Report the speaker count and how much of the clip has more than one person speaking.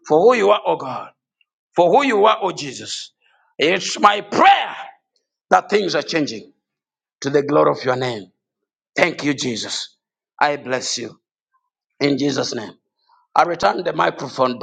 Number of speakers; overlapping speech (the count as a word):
one, no overlap